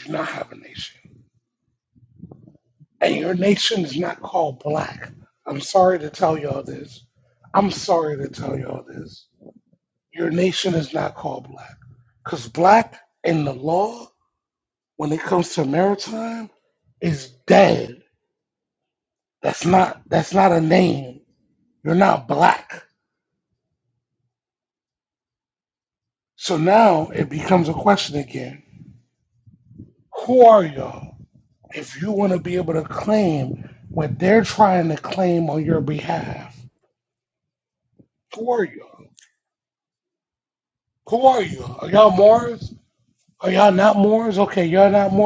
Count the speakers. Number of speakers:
1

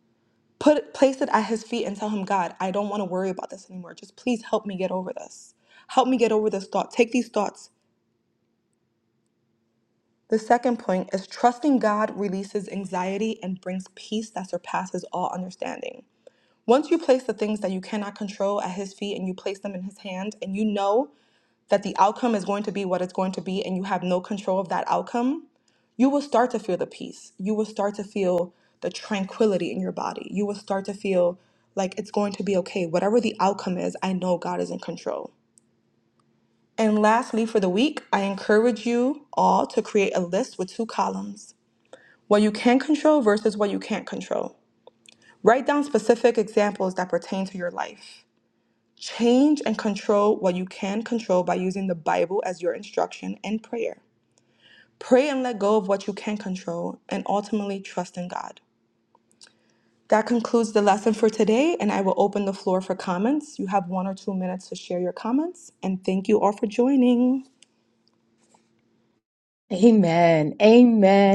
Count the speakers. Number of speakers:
2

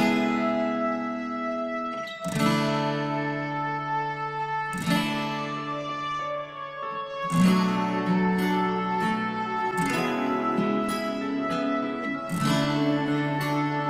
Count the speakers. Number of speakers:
0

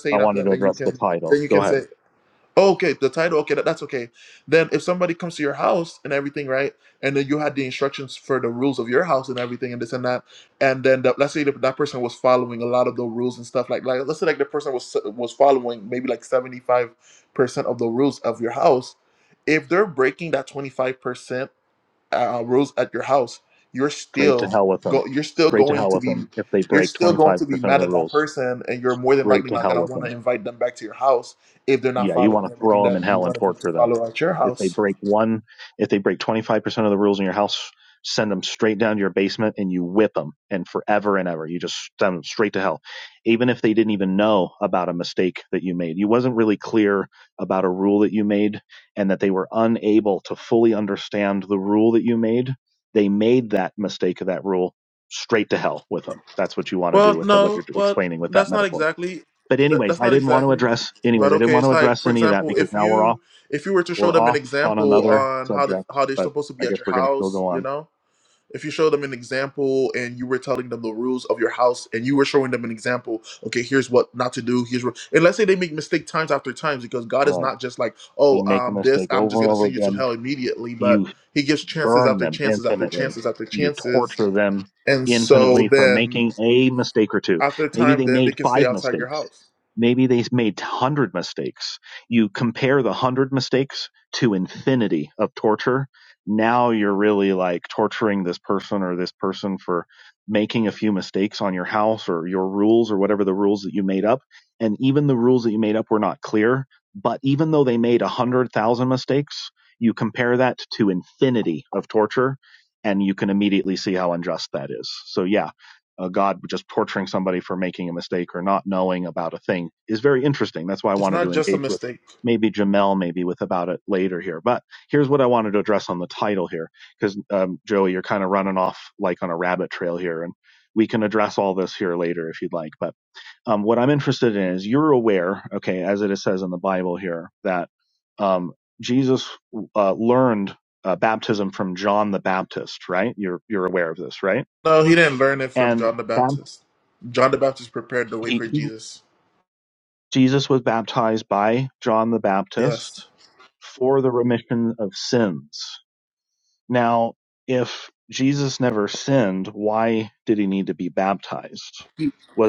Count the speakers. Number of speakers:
2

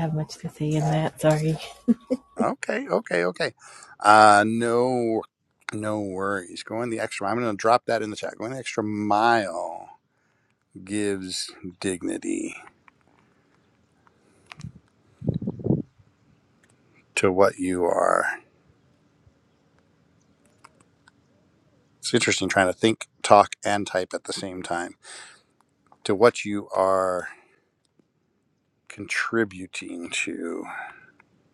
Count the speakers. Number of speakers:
2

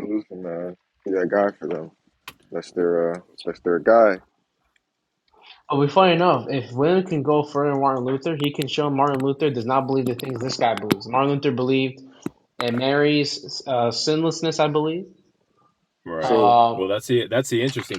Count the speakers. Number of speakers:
3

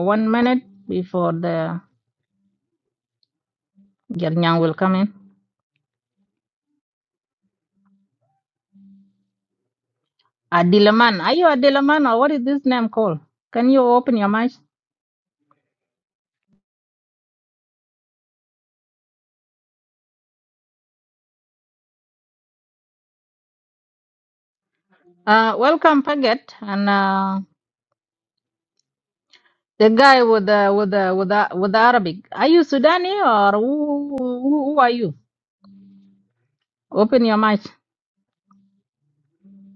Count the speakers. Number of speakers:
1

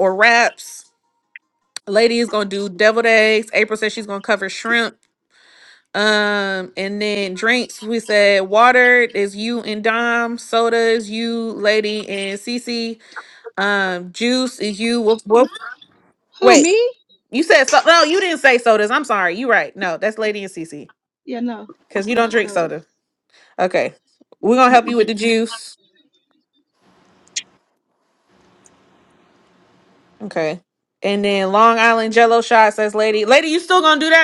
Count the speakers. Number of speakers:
2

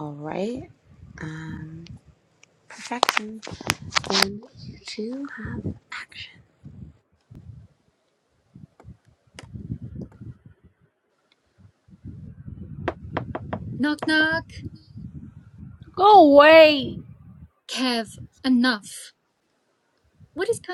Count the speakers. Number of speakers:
3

